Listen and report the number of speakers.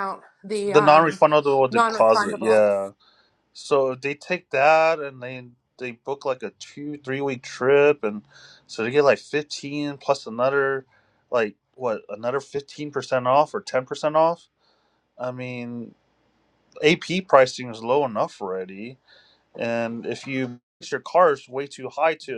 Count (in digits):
2